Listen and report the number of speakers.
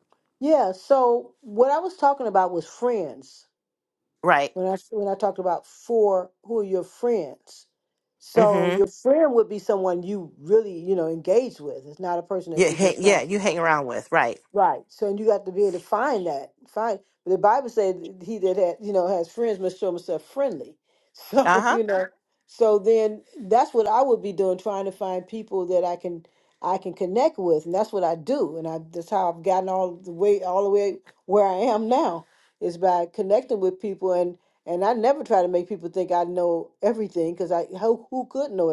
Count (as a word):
two